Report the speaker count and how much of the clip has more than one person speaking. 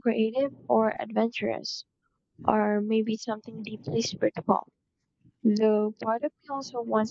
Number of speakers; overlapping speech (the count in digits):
1, no overlap